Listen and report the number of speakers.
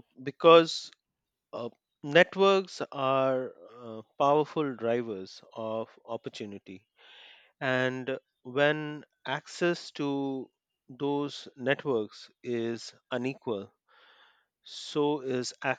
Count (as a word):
one